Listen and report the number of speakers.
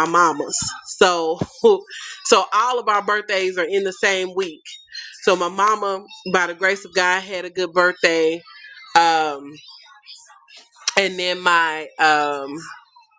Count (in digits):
1